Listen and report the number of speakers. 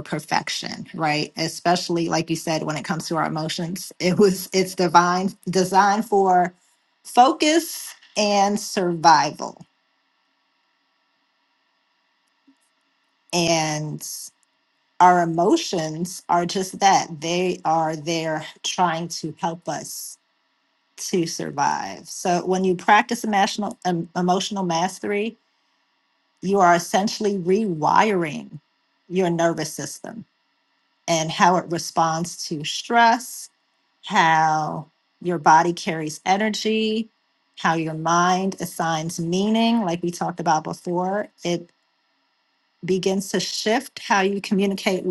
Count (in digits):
1